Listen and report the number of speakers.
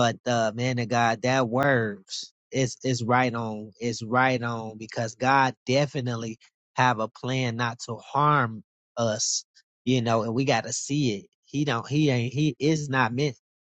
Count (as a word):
one